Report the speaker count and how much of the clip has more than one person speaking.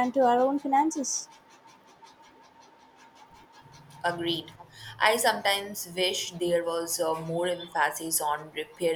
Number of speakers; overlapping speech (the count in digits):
2, no overlap